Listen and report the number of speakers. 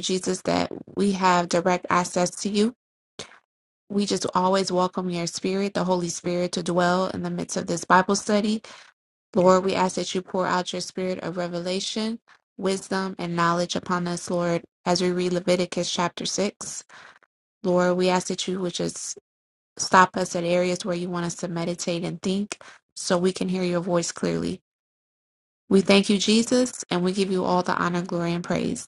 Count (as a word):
one